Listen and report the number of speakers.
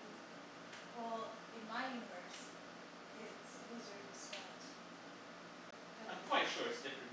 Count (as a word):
two